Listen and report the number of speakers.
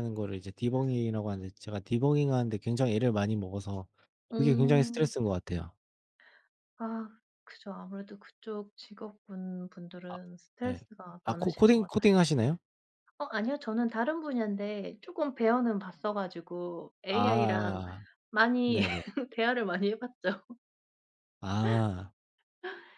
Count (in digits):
2